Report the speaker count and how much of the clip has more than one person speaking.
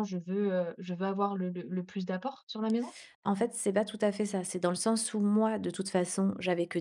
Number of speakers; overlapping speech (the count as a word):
two, no overlap